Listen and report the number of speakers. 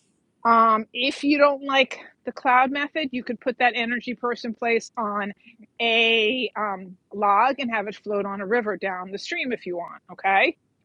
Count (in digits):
1